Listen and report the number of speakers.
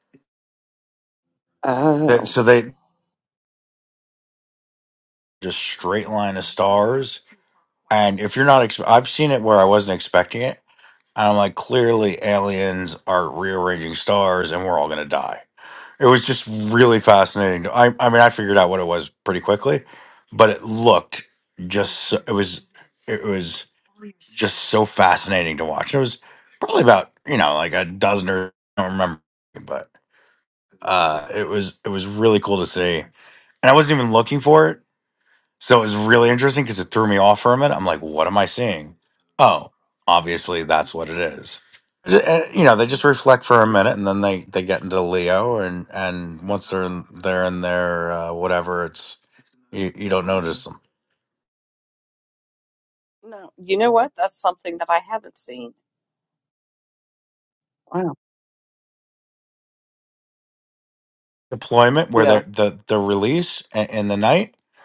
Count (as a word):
two